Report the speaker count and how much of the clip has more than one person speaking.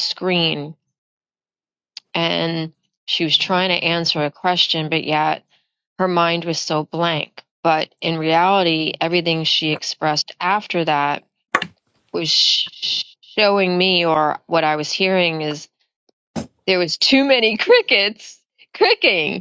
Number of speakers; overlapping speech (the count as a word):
one, no overlap